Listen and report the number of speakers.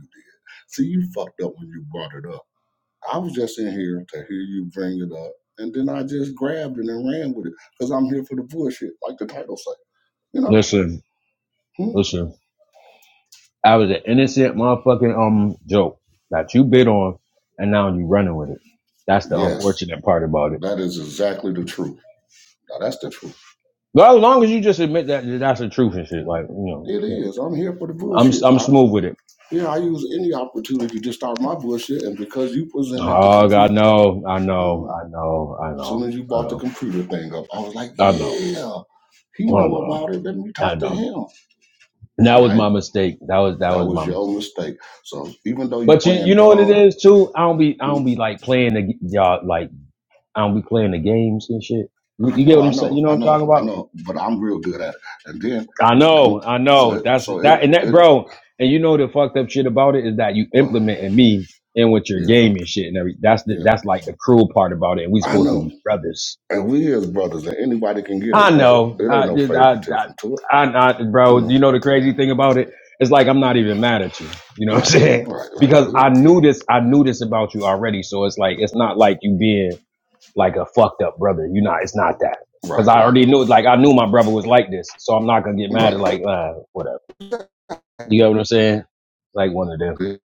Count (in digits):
2